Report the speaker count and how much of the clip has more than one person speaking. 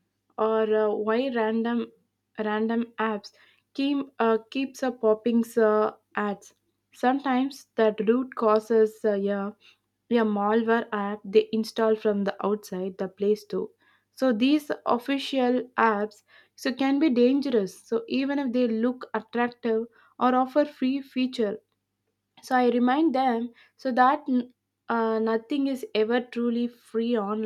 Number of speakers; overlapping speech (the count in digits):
1, no overlap